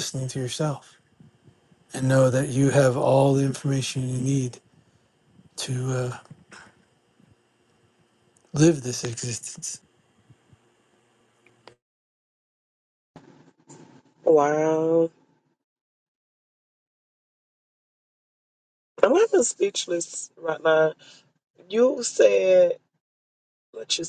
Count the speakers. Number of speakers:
2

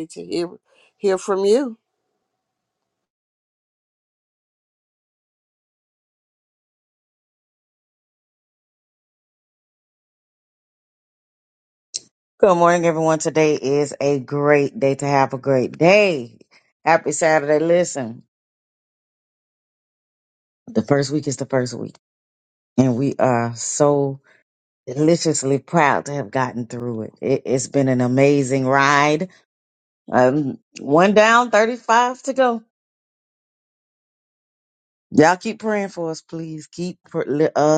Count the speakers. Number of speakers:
2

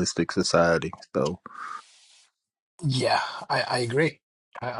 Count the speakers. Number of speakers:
2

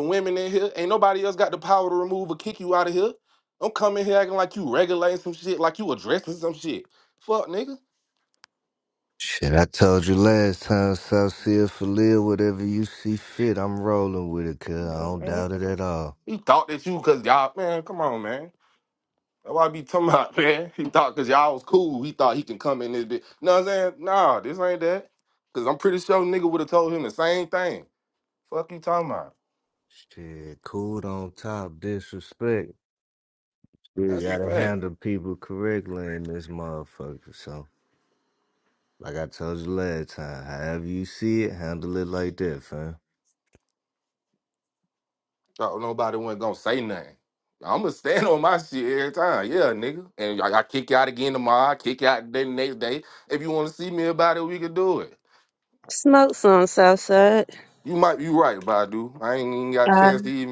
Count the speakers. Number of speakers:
3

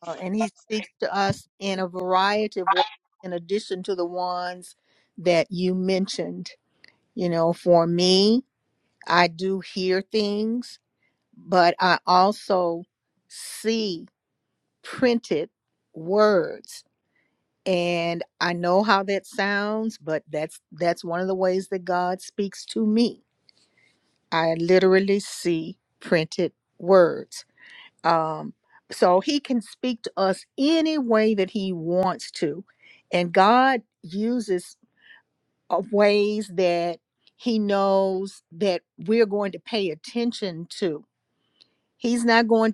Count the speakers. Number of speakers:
1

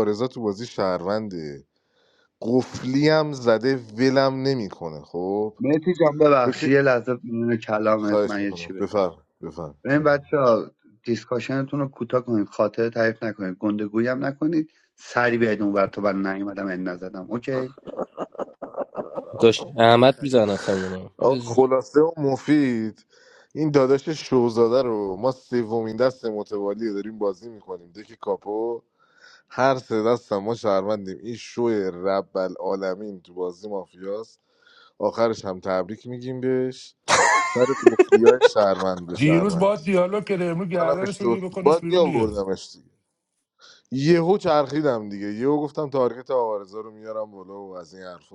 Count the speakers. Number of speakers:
4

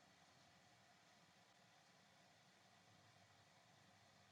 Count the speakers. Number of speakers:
0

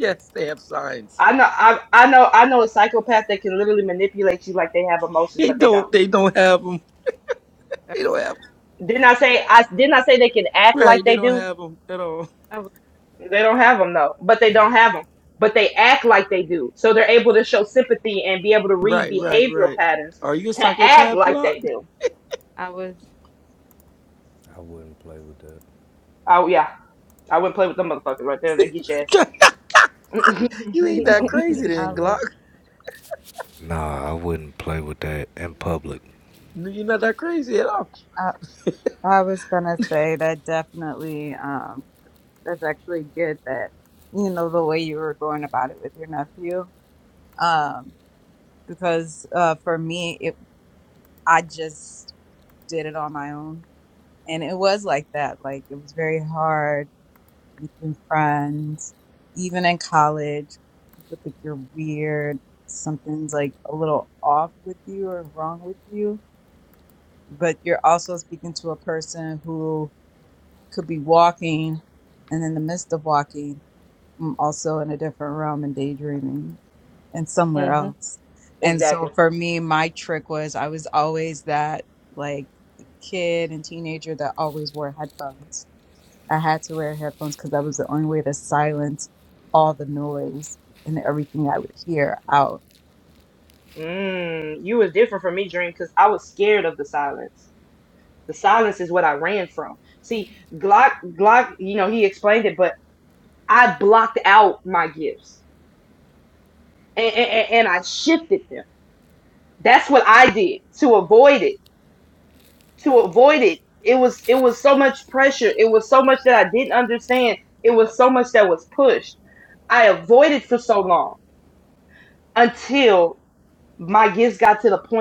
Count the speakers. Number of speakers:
4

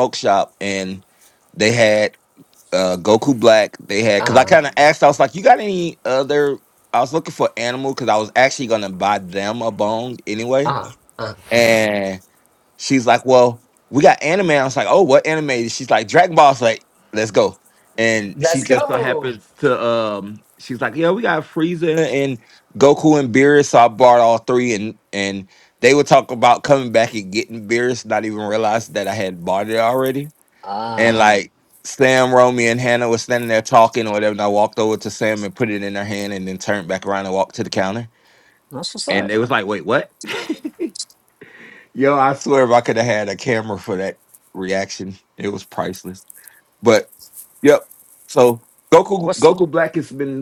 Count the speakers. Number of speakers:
2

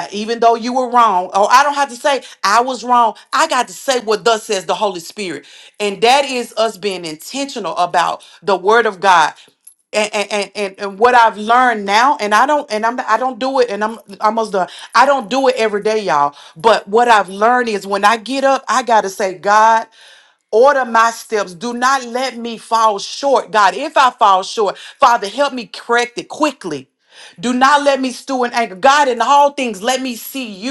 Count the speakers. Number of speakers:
1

